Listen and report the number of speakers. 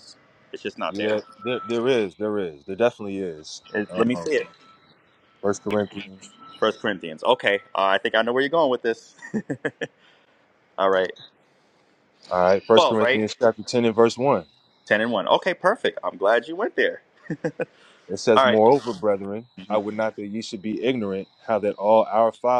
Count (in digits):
2